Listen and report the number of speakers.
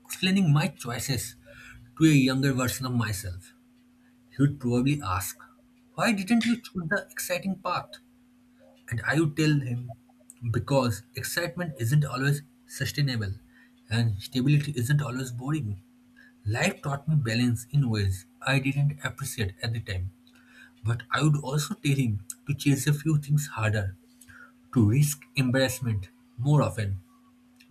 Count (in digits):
1